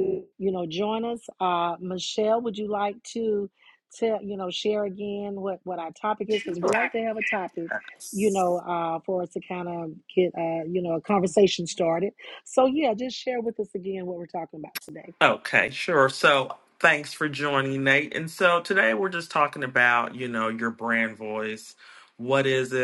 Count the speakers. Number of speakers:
2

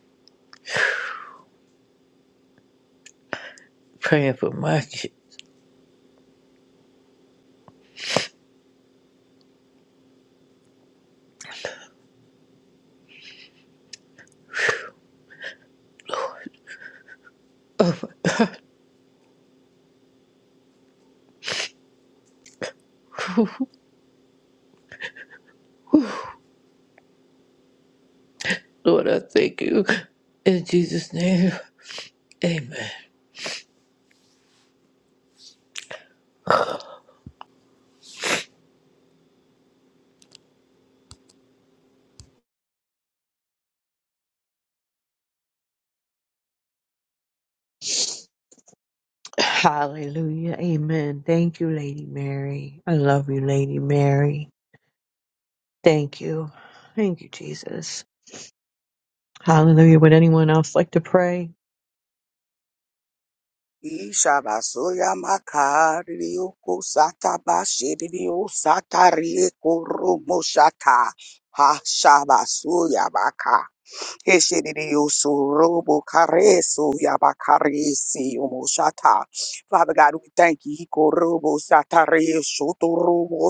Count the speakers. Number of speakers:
3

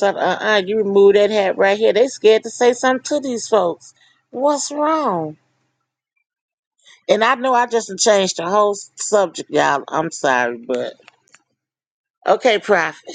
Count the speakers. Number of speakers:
1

